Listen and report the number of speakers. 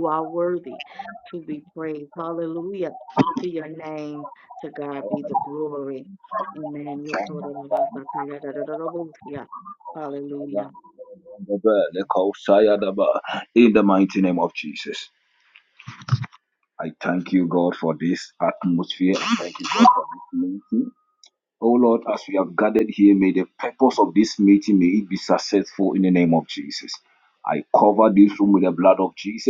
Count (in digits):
2